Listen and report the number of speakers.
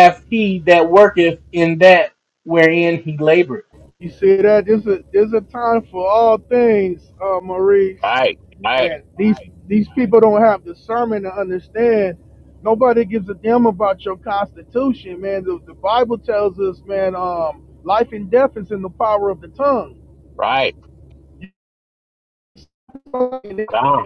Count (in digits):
3